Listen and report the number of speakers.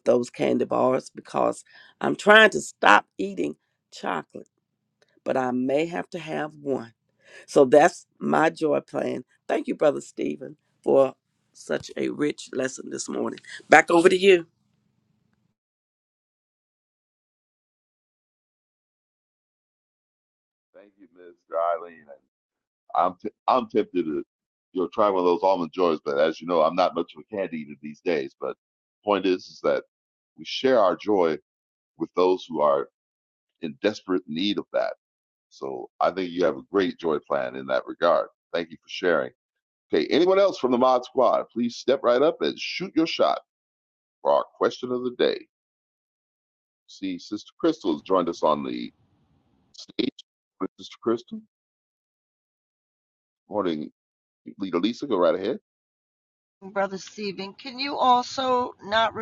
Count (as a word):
three